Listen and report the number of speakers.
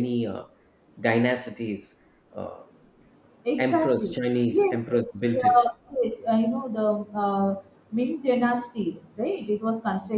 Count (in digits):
2